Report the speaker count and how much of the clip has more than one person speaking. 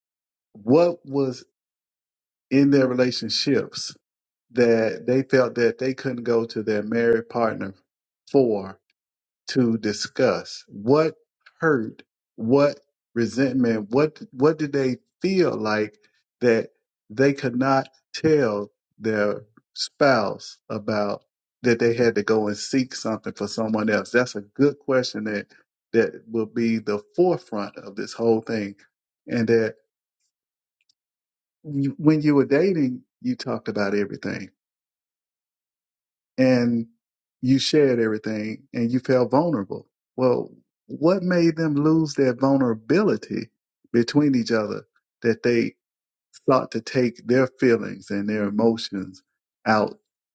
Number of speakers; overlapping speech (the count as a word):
one, no overlap